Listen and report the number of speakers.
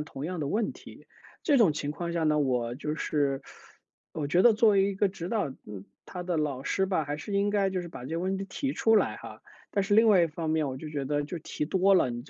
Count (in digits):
1